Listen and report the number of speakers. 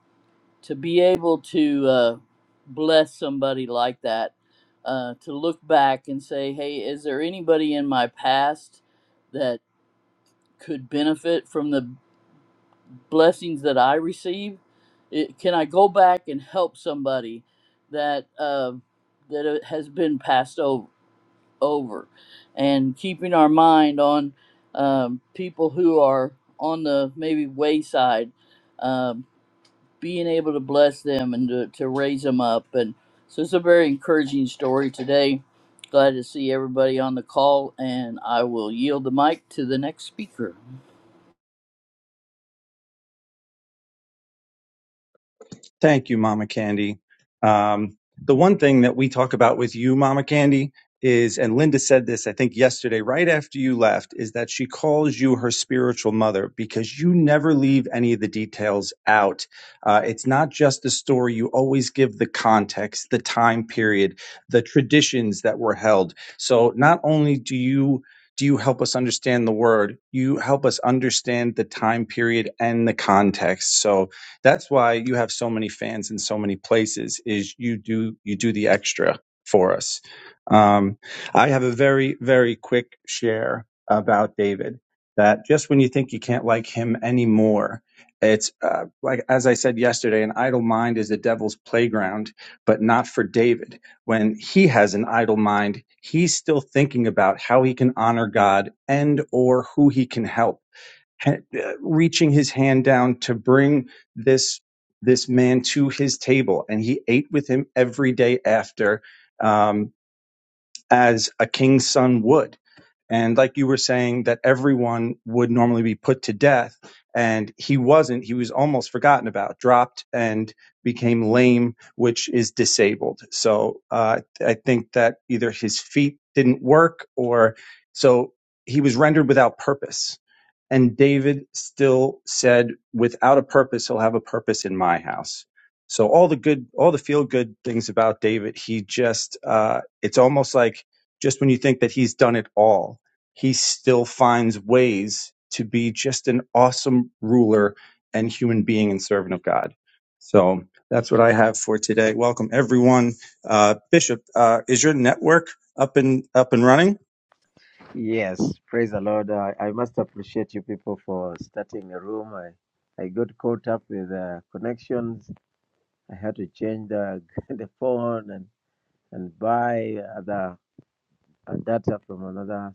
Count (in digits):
3